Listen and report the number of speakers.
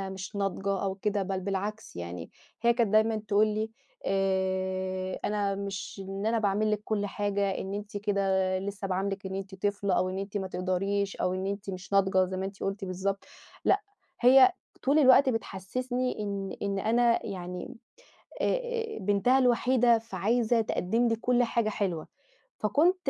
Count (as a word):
one